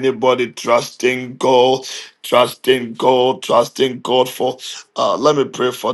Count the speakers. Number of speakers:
1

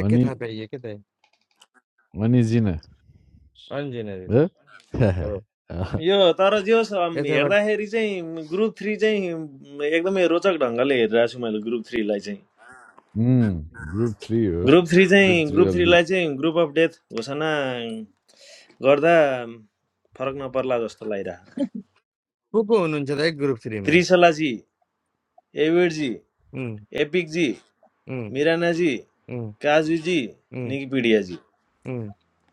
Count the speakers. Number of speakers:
3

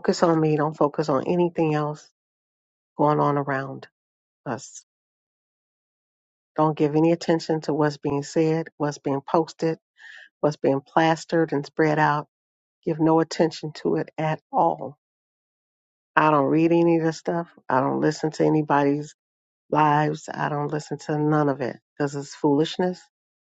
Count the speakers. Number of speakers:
1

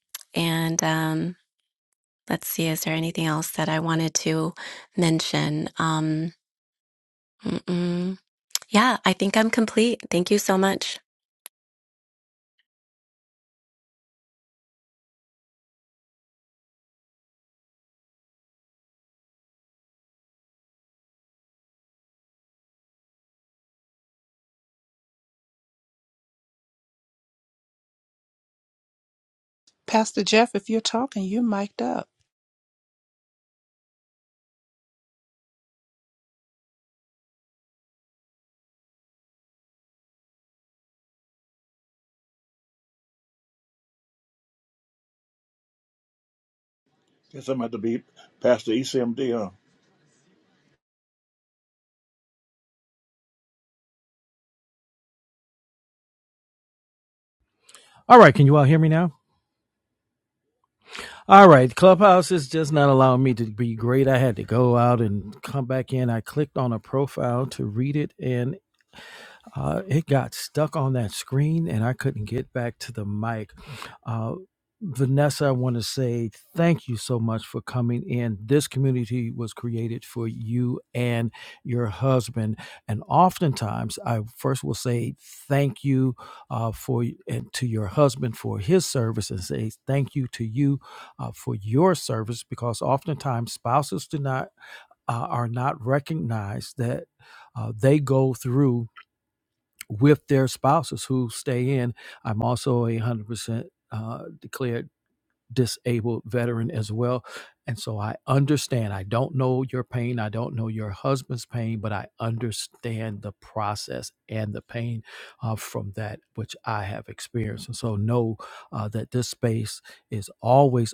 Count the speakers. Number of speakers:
4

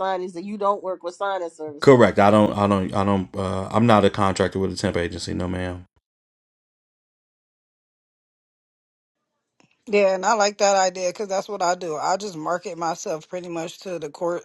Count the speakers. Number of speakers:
3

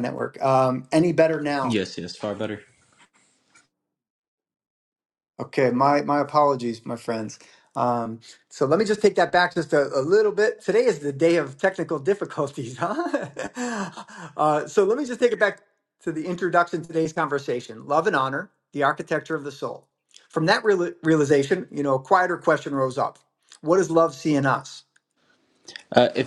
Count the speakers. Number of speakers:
2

